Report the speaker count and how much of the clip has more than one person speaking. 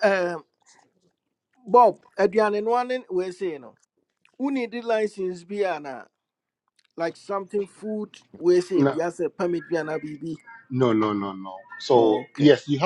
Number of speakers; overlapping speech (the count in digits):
2, about 8%